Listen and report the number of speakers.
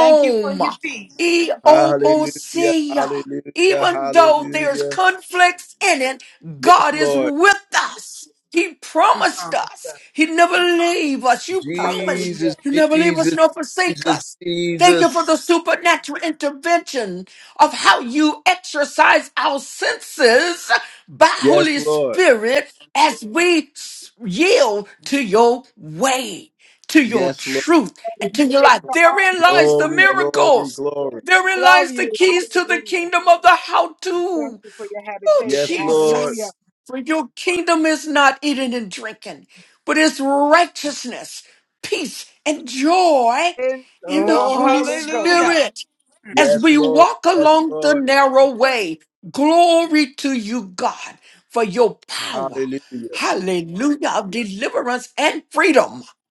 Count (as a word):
four